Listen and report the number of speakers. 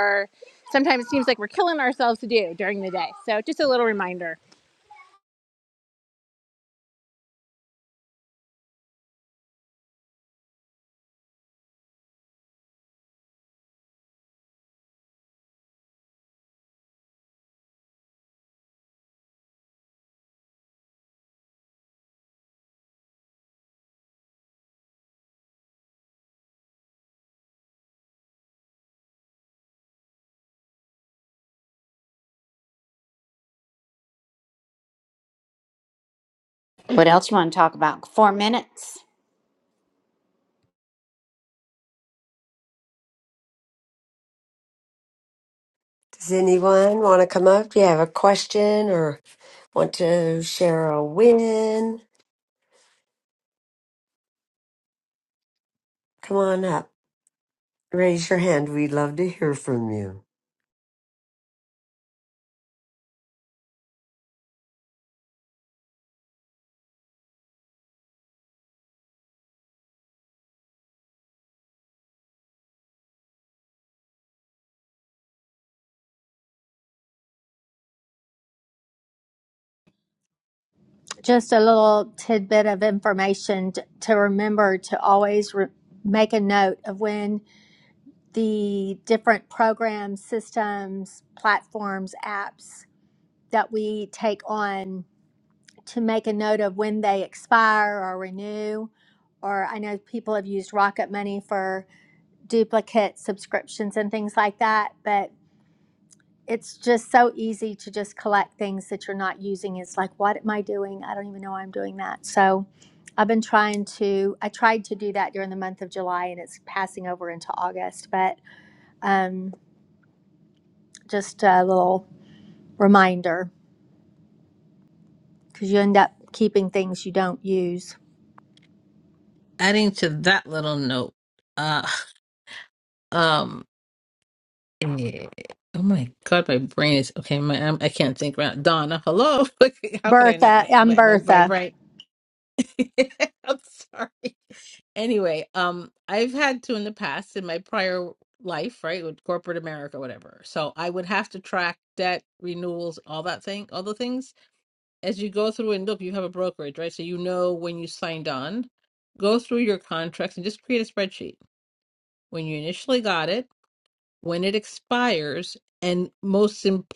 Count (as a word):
five